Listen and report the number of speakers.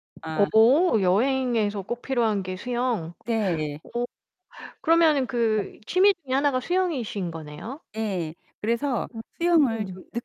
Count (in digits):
2